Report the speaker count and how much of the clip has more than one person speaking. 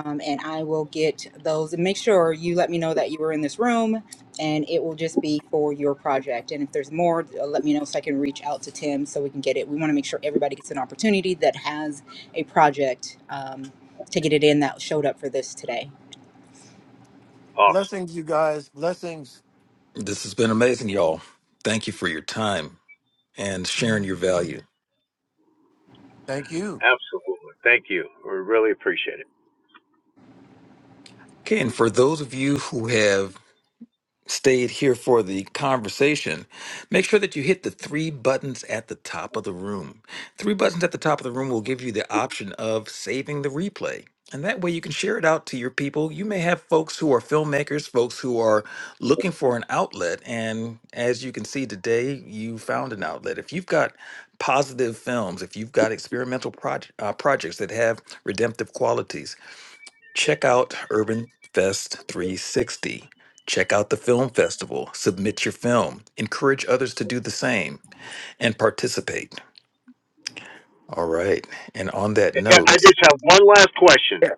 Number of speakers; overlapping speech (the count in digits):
4, about 1%